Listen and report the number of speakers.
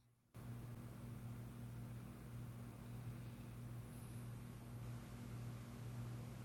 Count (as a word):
zero